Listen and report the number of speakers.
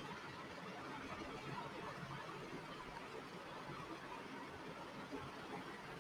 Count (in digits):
0